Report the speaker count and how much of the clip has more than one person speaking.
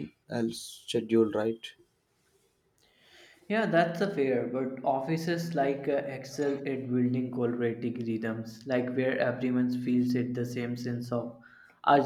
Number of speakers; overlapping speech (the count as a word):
two, no overlap